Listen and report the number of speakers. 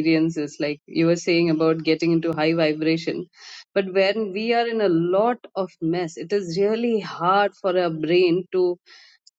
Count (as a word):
one